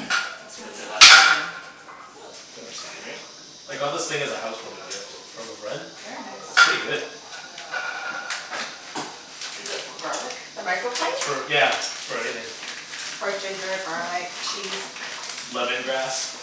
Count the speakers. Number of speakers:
4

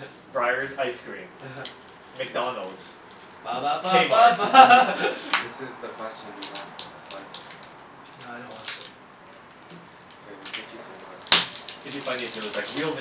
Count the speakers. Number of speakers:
3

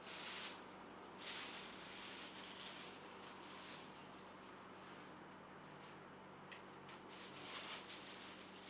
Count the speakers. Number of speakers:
0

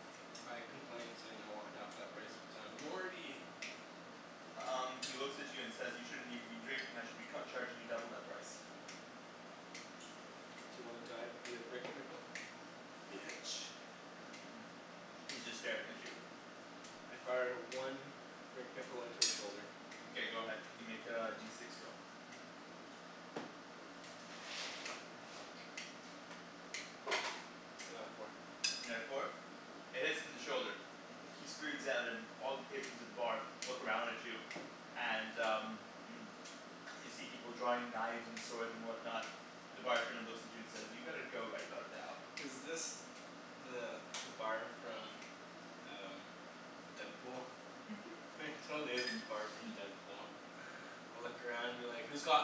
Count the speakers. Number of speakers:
2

